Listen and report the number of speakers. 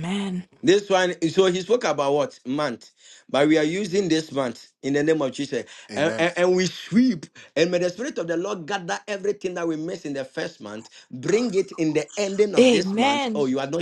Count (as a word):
two